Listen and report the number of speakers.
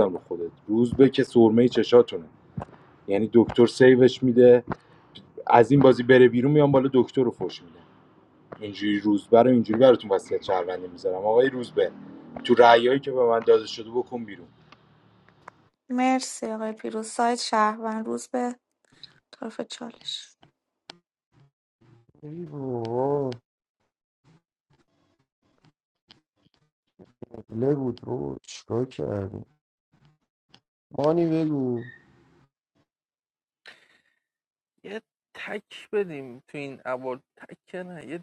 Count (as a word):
four